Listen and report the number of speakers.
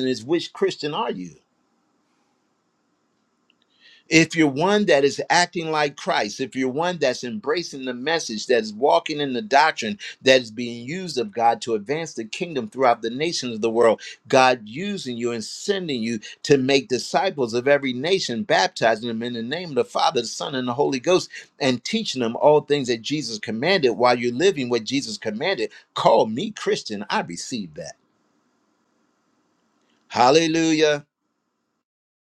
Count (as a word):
one